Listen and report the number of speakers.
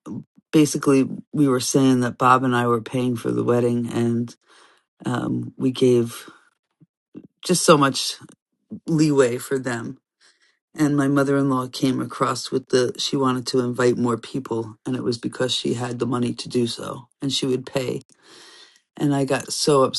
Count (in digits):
1